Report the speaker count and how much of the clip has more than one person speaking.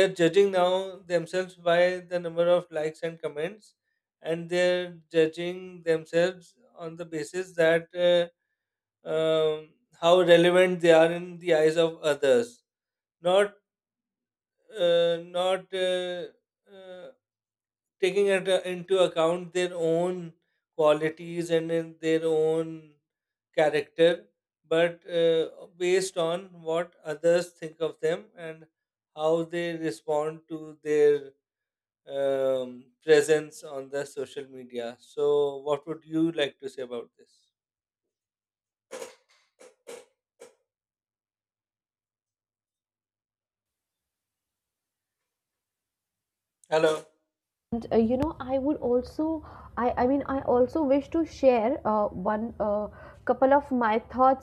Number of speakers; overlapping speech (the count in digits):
2, no overlap